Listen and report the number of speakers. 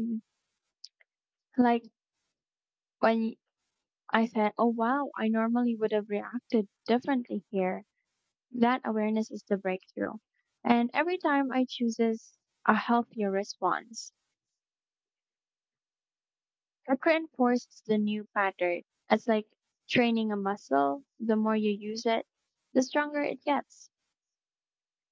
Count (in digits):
1